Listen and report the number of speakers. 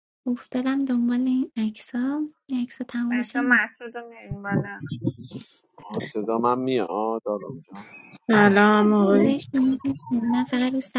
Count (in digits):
4